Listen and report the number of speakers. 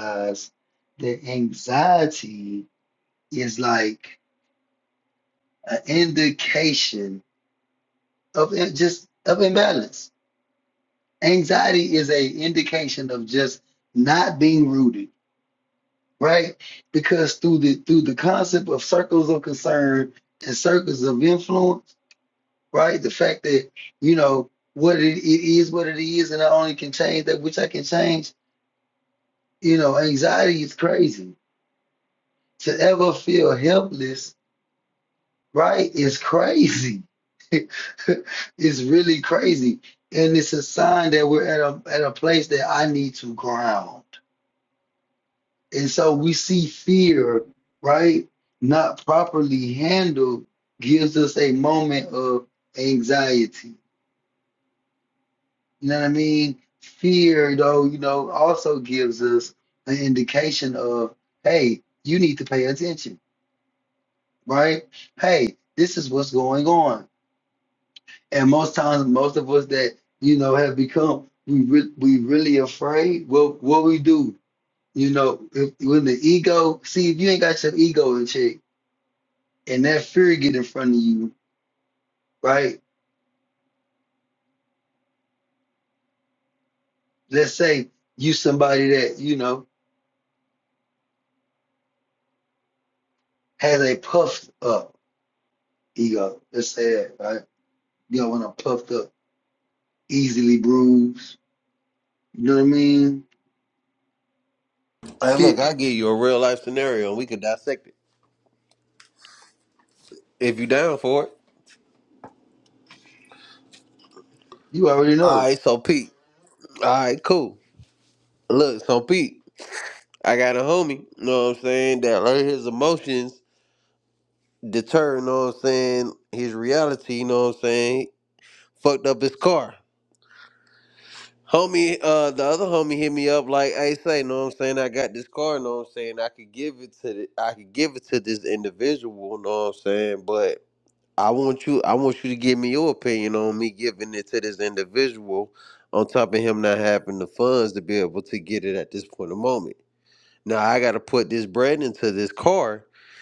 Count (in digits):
2